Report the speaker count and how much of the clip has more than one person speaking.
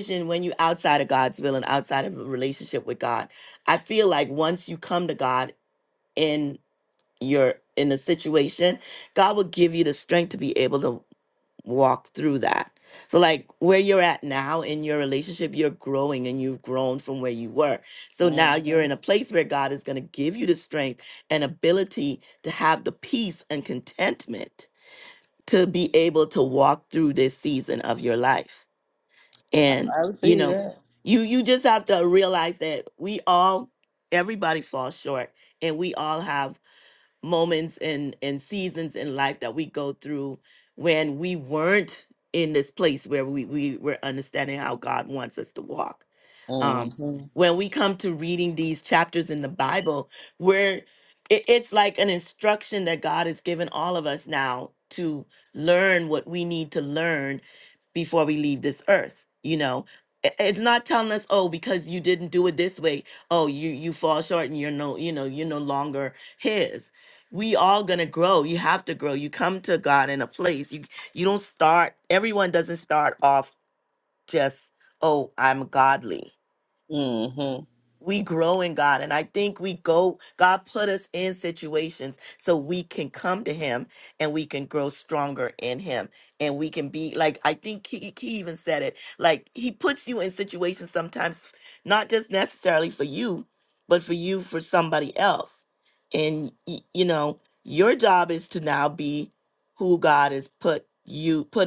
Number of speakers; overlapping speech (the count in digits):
2, about 1%